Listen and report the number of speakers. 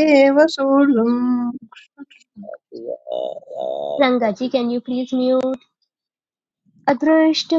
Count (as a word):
three